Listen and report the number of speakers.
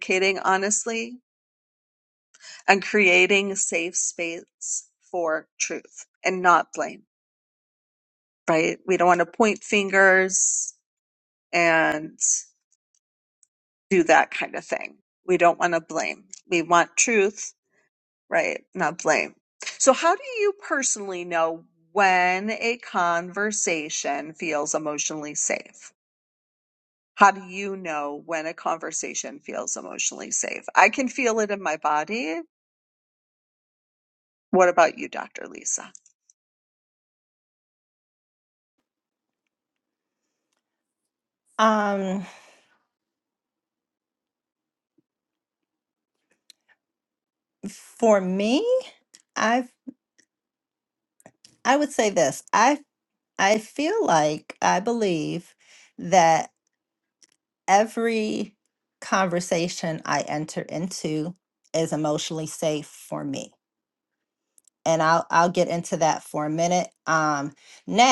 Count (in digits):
2